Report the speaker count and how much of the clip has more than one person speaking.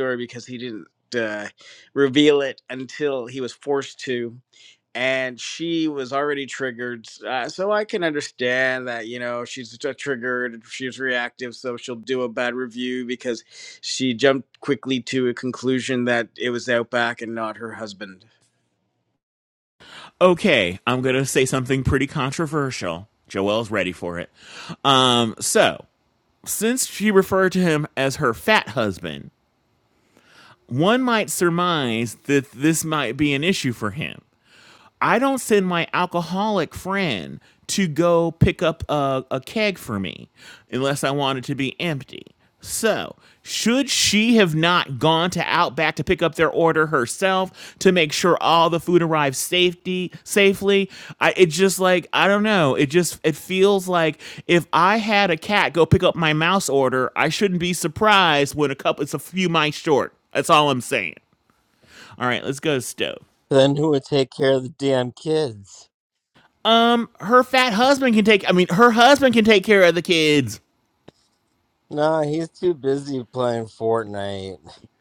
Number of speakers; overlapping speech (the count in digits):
3, no overlap